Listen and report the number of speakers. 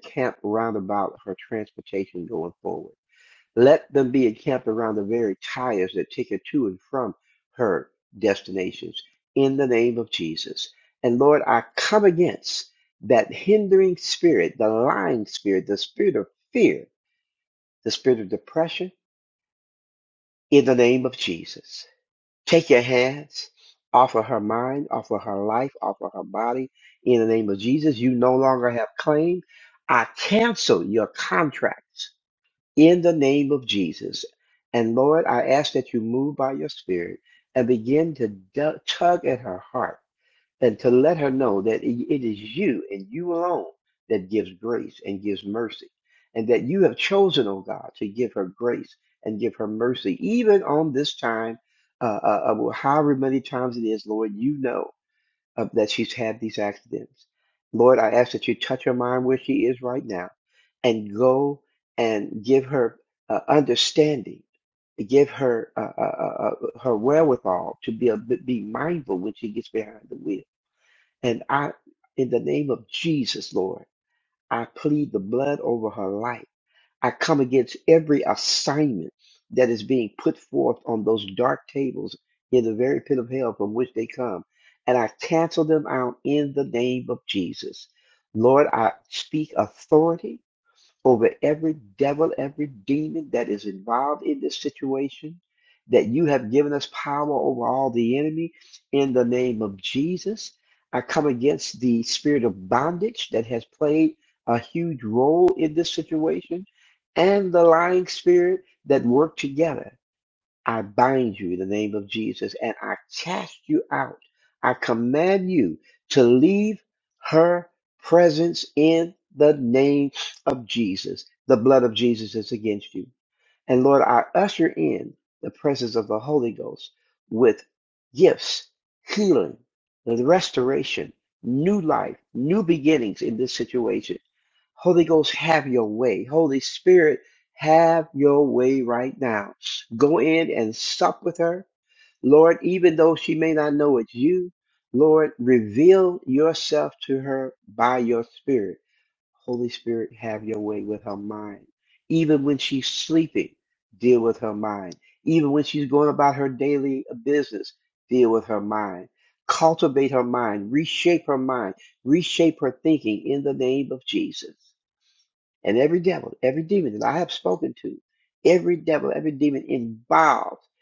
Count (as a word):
one